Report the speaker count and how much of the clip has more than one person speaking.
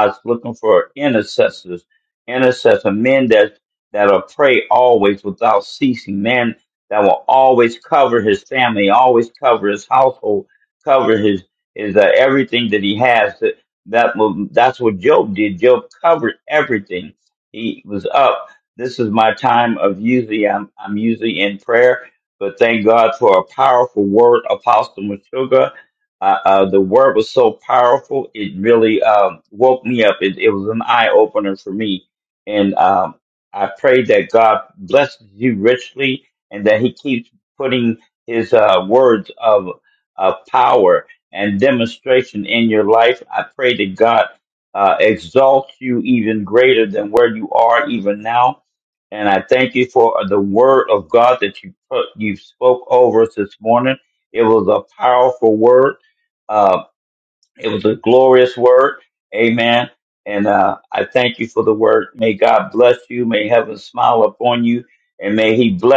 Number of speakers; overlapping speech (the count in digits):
1, no overlap